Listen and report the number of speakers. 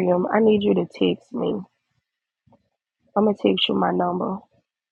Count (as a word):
one